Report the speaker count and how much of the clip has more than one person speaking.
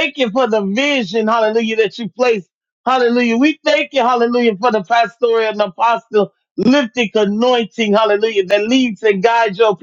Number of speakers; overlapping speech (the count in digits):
1, no overlap